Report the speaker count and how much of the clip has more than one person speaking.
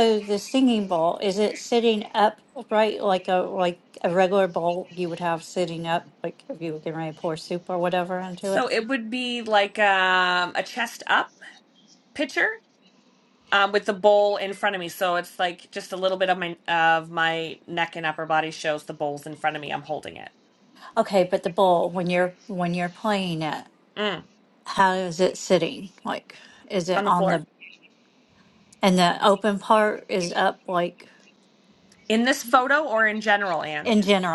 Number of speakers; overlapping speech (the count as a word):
two, about 2%